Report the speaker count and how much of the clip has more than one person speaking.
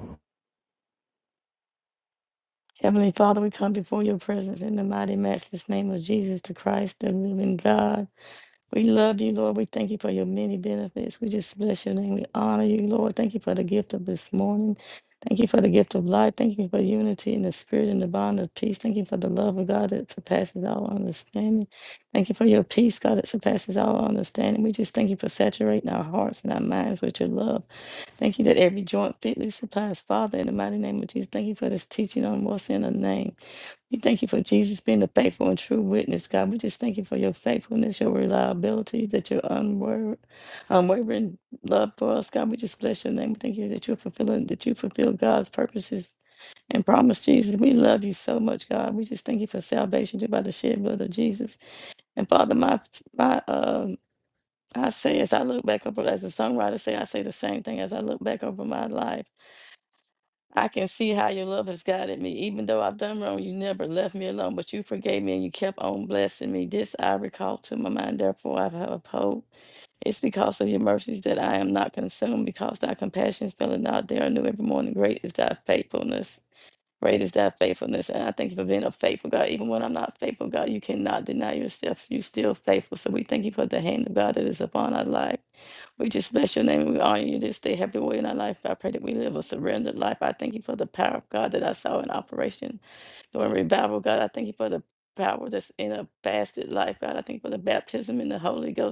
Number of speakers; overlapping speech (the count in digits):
1, no overlap